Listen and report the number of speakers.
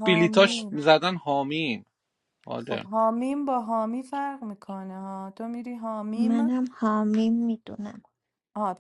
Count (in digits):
3